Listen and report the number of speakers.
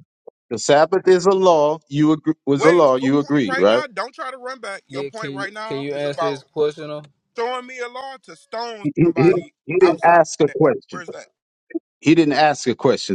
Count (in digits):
3